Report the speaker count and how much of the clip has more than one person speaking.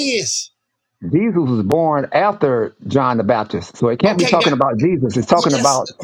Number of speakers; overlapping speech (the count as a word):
two, about 14%